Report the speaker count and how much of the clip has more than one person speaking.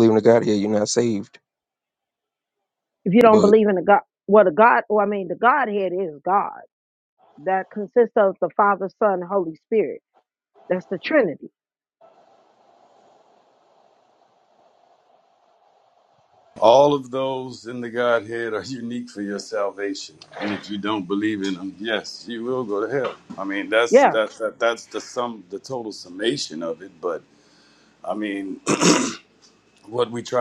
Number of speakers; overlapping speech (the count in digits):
3, about 2%